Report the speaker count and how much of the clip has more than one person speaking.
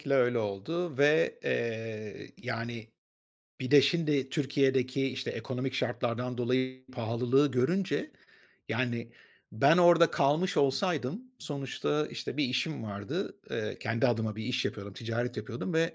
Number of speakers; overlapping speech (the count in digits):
1, no overlap